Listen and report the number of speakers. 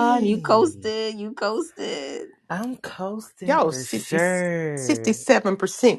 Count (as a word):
three